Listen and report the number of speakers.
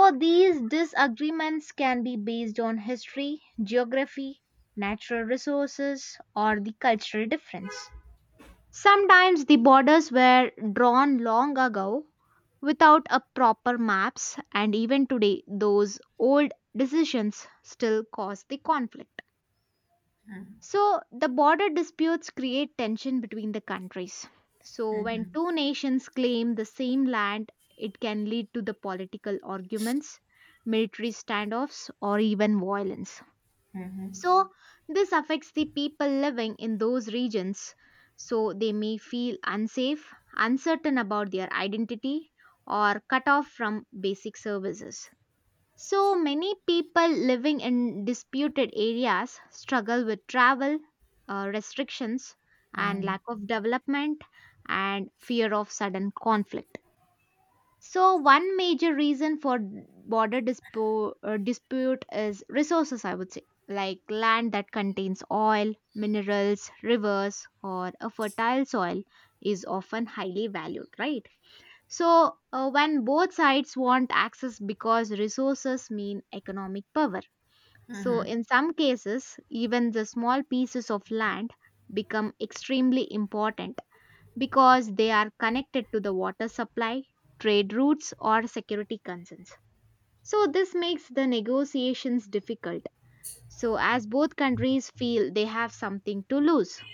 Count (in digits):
1